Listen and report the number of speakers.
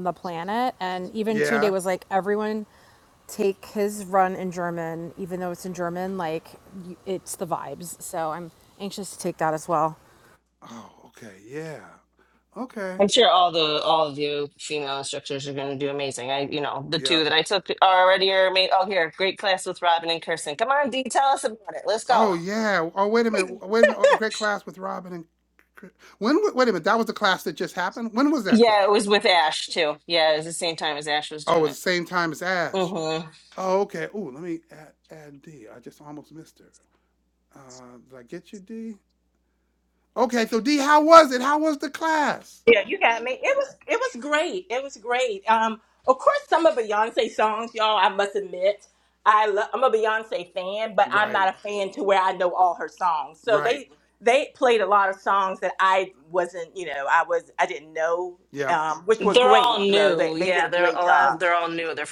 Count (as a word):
four